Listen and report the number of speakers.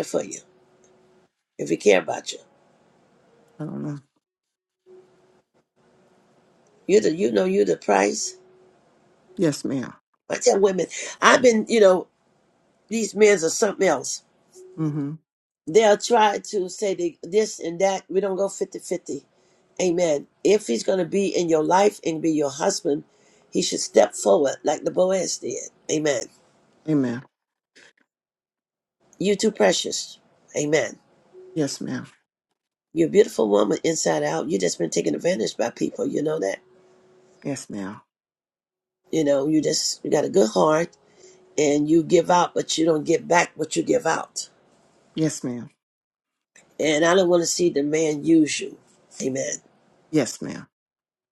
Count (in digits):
2